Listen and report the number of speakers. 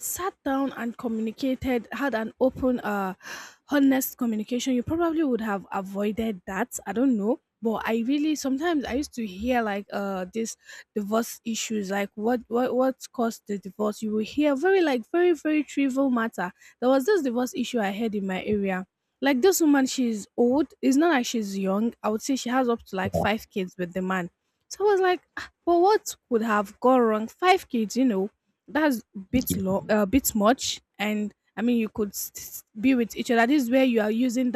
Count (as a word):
one